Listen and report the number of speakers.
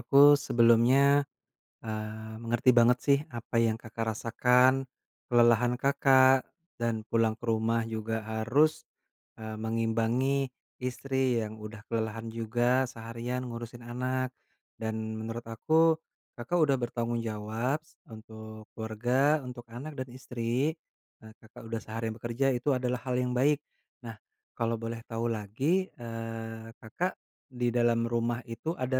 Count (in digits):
1